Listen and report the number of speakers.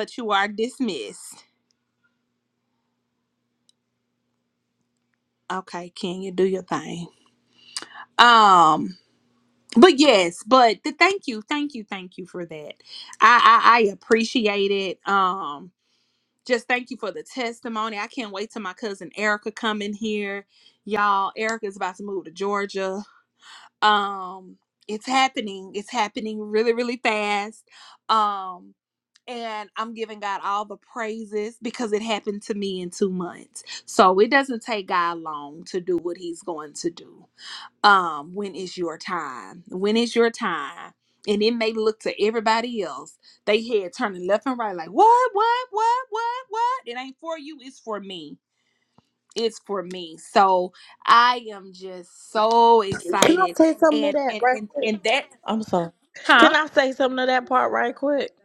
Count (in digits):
2